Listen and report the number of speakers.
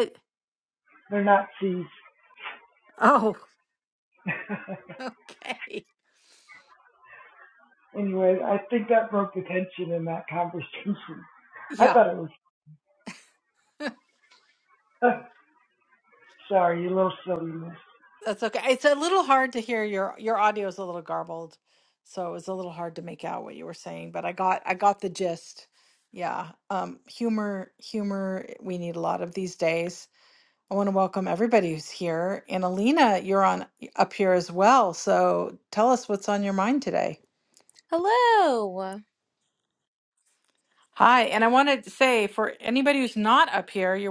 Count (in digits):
3